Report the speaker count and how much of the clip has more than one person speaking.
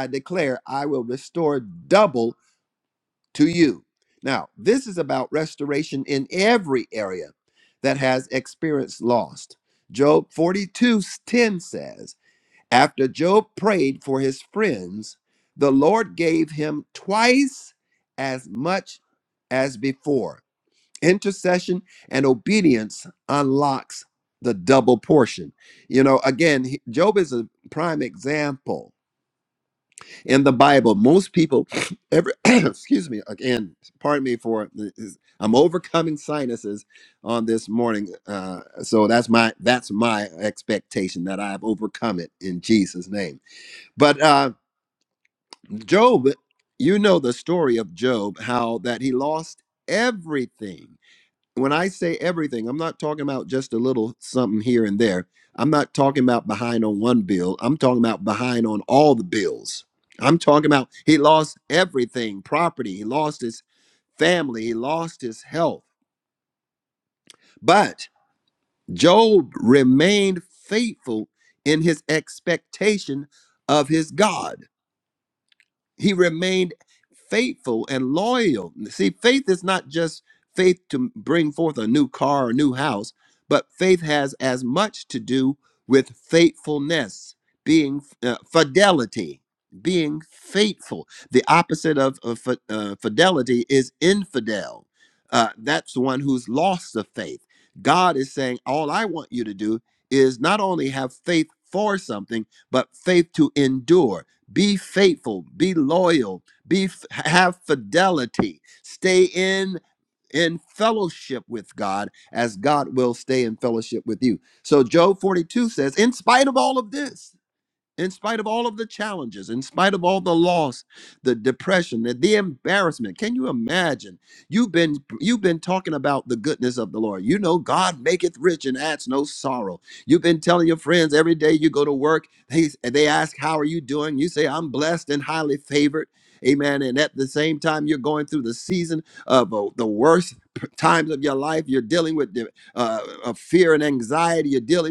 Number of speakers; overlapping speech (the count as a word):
one, no overlap